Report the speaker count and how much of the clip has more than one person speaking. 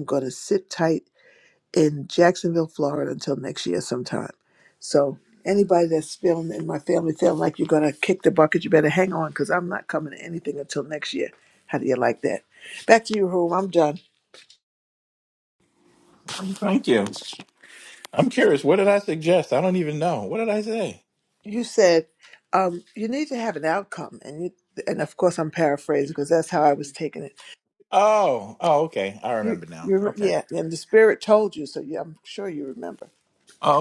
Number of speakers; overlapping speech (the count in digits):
2, about 3%